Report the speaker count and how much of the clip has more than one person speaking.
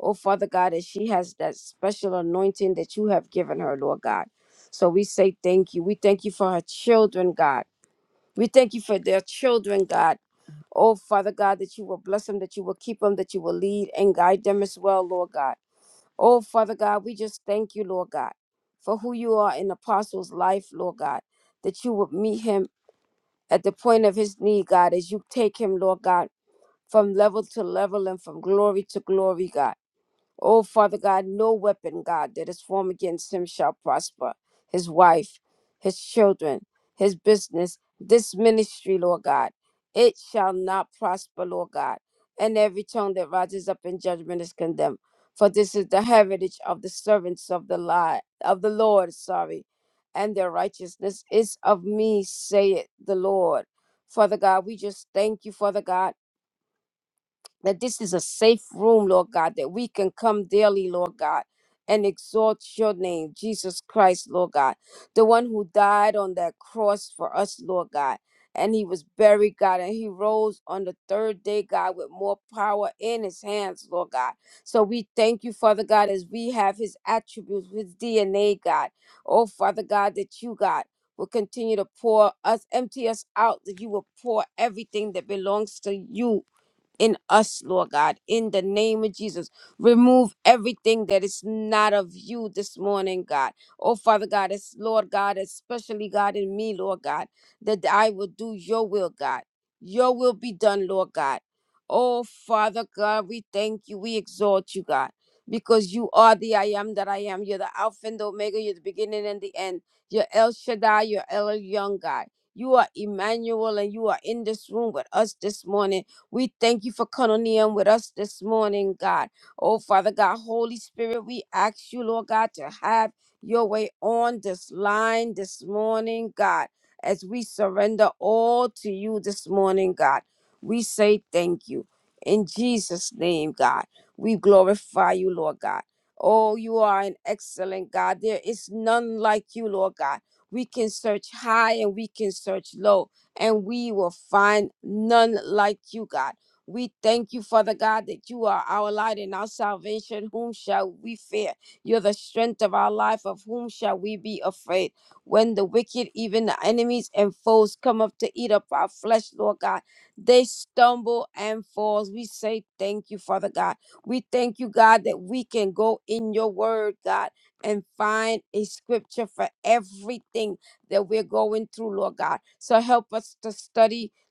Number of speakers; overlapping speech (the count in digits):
1, no overlap